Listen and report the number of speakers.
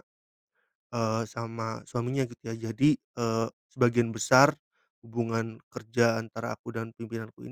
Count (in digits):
1